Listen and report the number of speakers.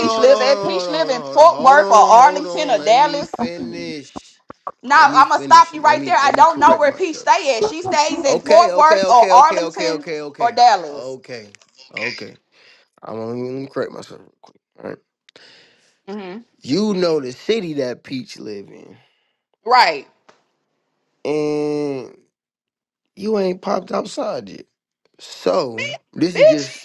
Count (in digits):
2